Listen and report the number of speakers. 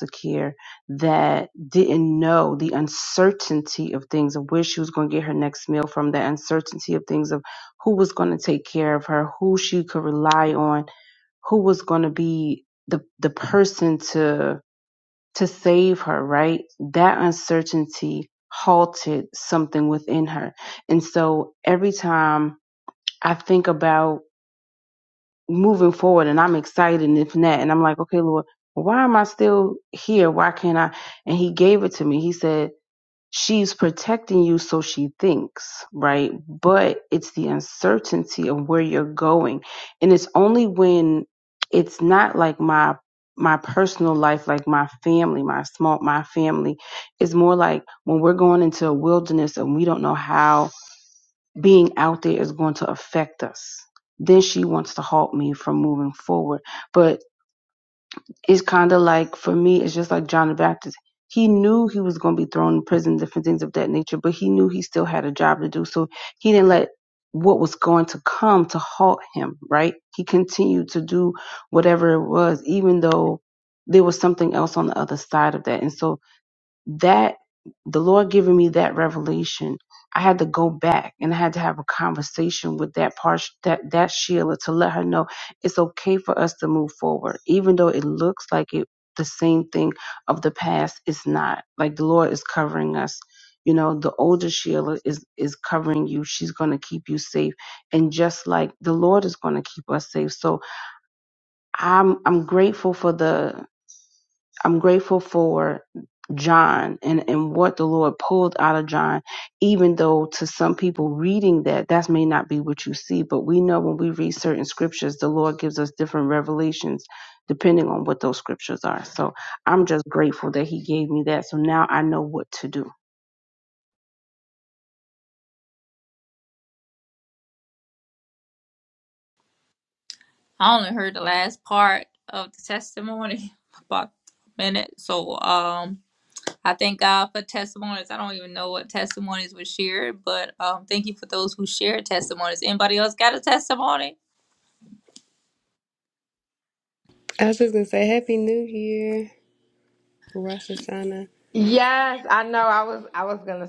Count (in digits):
4